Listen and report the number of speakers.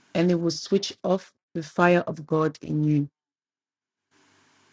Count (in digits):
1